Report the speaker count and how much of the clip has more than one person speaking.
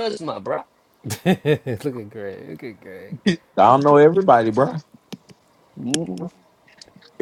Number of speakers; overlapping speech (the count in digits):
3, no overlap